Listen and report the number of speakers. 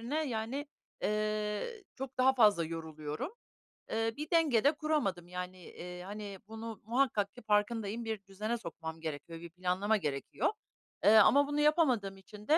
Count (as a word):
one